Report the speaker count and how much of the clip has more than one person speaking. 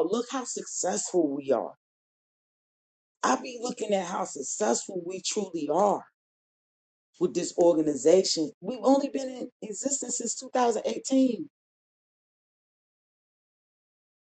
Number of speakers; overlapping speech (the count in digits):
1, no overlap